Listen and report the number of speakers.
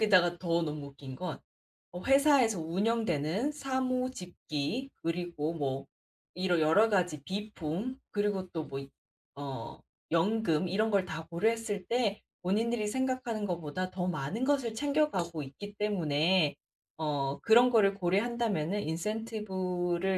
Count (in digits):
1